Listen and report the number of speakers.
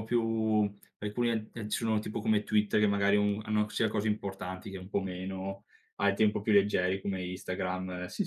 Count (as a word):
one